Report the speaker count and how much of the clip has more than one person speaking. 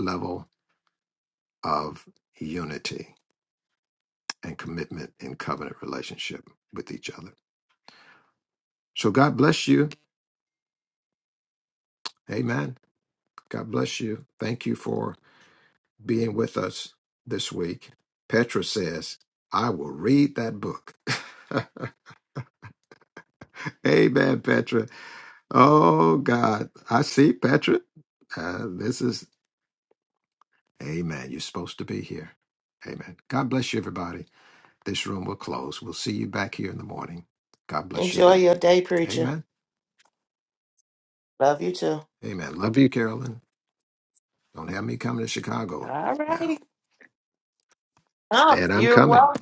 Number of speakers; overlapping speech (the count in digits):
2, about 4%